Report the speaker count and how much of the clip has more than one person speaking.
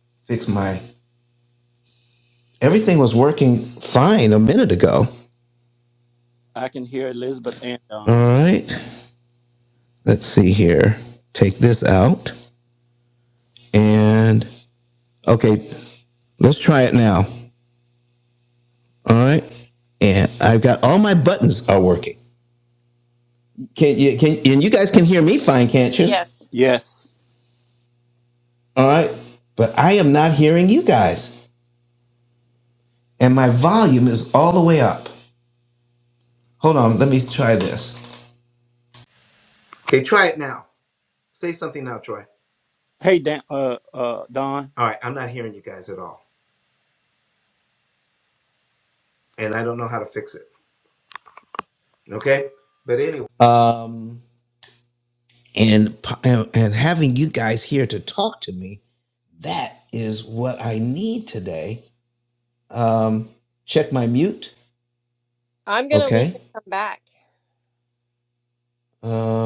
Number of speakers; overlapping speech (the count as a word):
three, about 1%